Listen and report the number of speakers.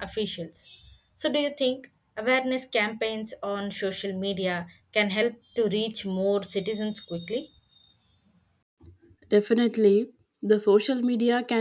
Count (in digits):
2